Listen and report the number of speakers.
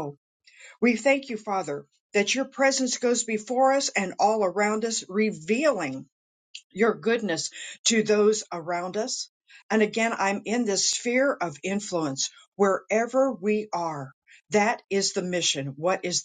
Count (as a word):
one